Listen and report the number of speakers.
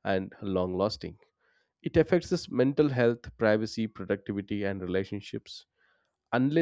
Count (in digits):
1